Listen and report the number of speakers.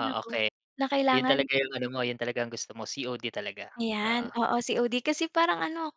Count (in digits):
2